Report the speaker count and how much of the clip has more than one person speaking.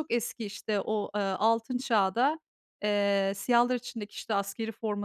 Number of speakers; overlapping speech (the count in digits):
1, no overlap